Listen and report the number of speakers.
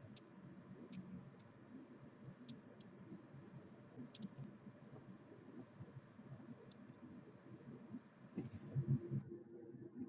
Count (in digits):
0